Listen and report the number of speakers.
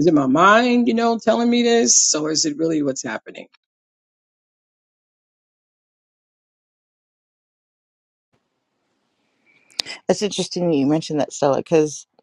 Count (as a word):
two